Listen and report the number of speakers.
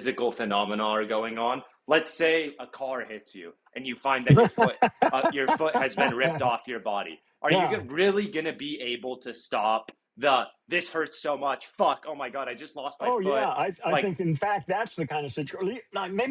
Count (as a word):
two